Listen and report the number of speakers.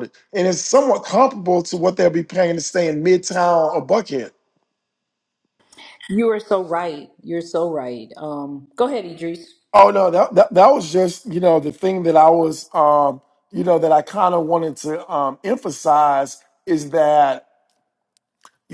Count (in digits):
2